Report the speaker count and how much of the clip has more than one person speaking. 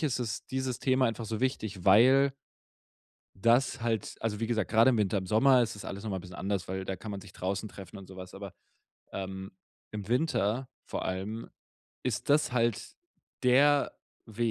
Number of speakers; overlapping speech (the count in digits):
1, no overlap